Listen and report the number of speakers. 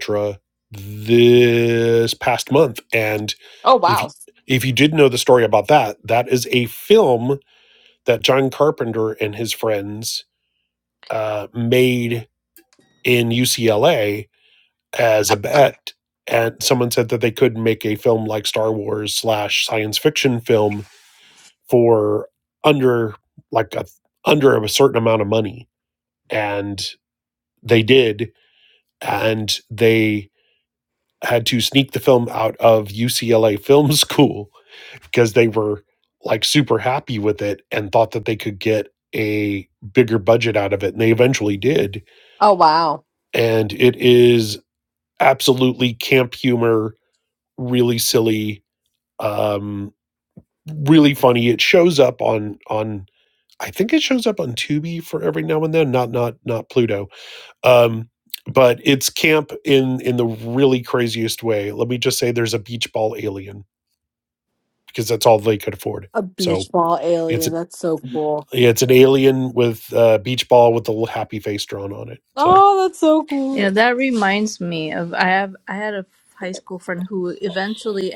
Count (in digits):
3